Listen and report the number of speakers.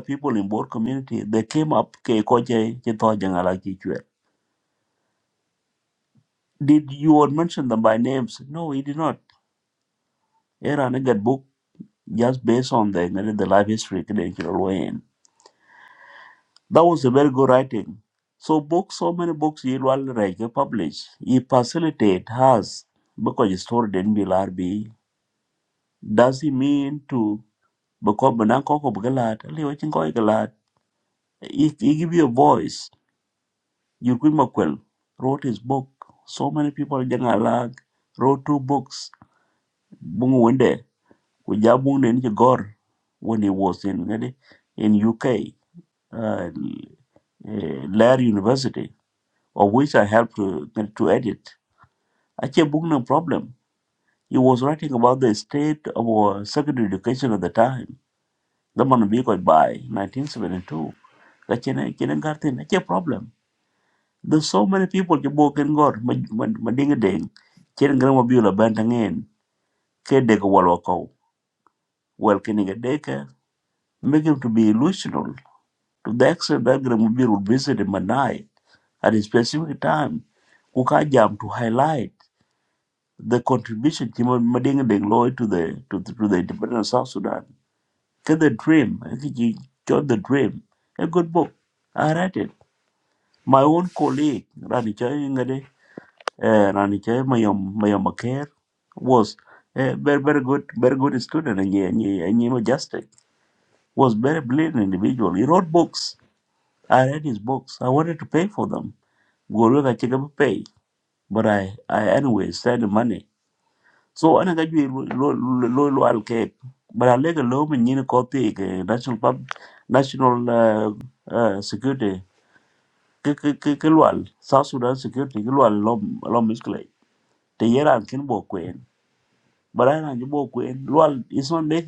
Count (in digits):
1